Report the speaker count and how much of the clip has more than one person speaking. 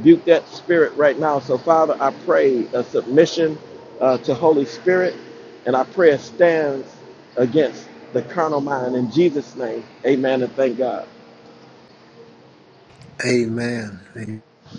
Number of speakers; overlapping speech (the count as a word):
two, no overlap